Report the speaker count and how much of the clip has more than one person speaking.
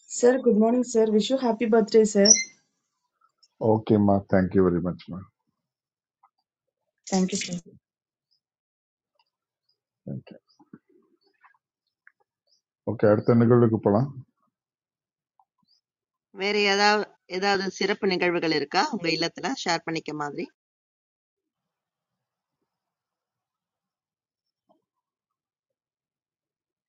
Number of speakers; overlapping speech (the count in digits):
3, no overlap